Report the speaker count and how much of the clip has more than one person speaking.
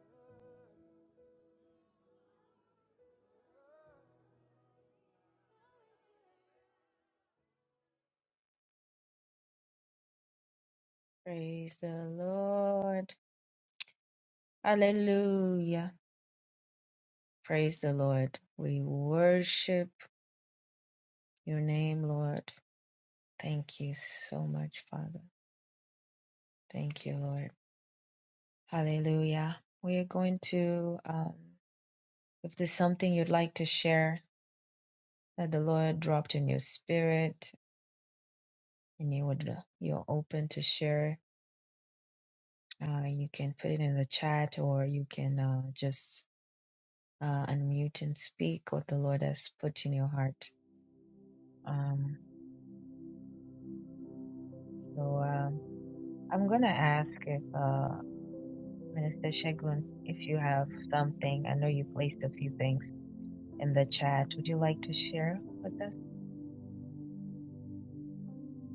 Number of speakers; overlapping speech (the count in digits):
1, no overlap